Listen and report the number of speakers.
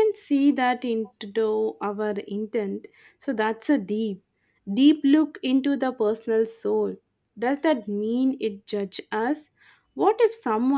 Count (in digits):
1